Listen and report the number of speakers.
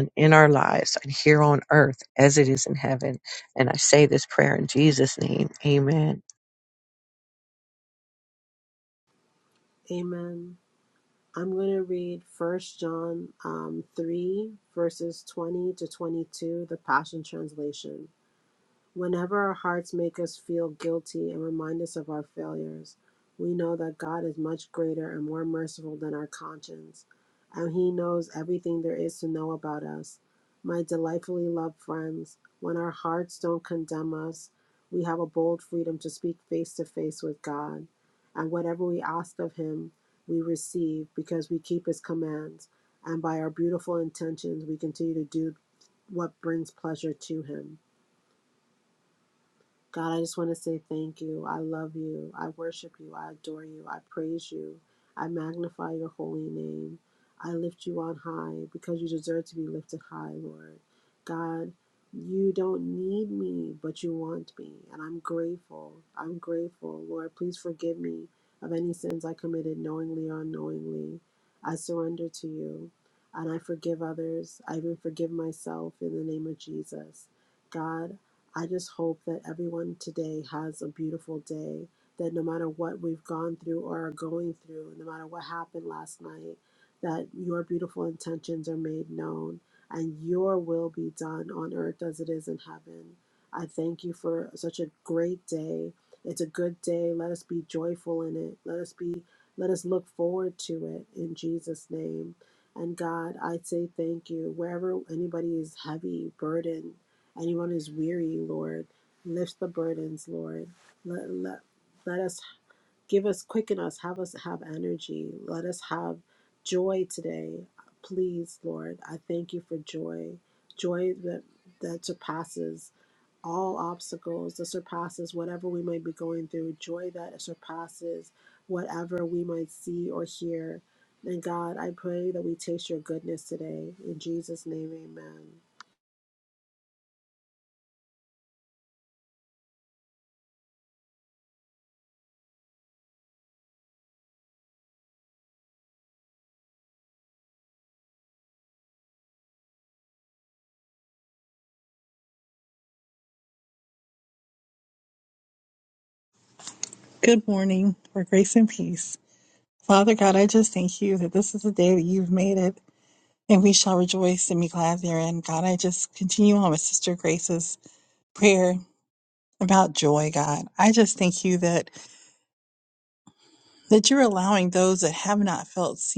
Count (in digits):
3